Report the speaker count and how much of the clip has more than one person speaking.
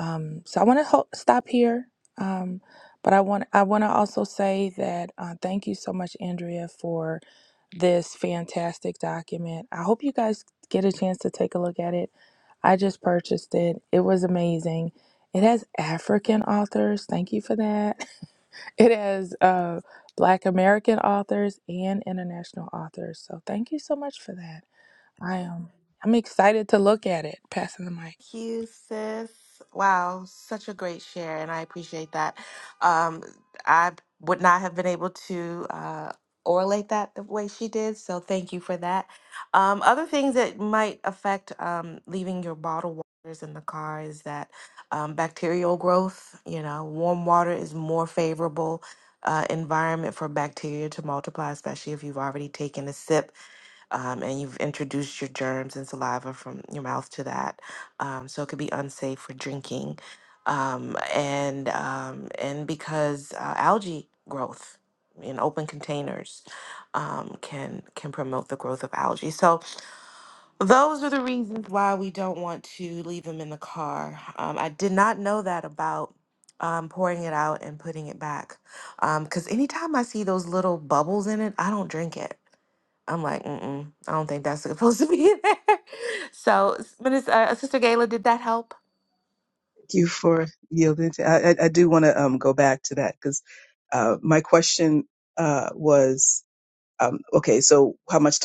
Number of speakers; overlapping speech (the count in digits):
3, no overlap